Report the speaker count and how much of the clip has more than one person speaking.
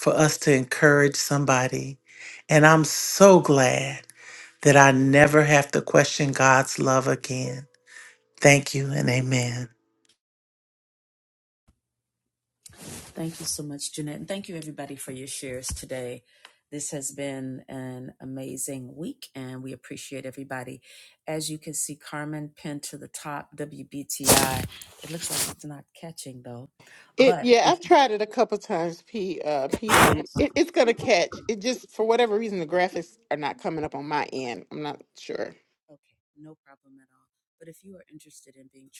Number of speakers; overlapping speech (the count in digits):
3, about 2%